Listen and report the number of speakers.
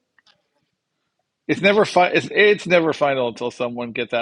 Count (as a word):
one